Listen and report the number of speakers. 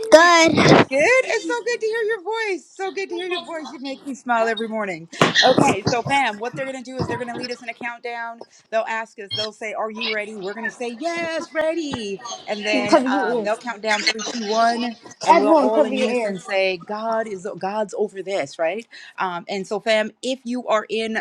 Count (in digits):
2